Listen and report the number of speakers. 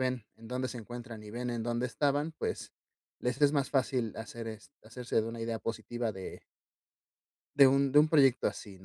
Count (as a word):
one